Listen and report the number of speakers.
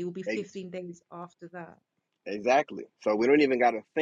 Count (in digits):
2